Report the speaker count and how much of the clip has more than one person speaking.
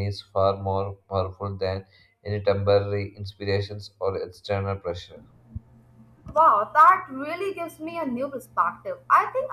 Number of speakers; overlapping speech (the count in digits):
2, no overlap